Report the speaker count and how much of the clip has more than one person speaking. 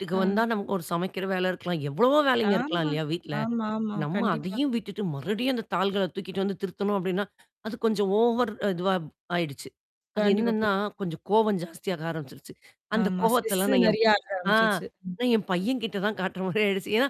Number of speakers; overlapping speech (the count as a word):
two, about 17%